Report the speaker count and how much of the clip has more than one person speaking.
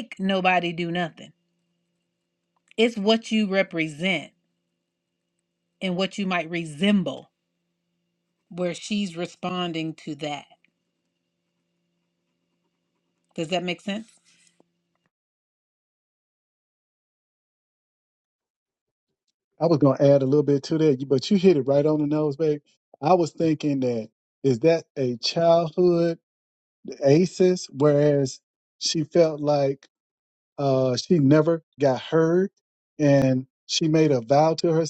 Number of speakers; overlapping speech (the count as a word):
two, no overlap